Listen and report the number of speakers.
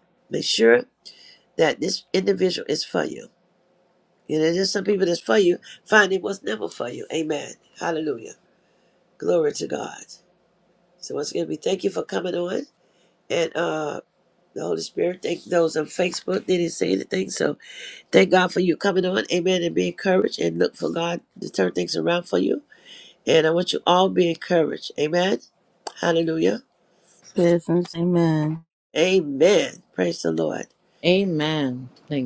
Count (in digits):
3